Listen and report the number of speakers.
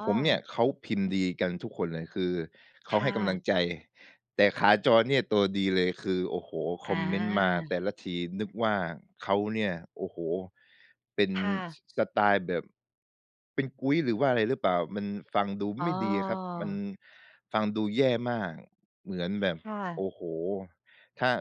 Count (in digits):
2